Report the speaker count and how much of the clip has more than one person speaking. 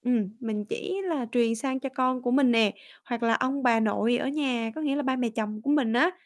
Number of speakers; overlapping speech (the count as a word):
one, no overlap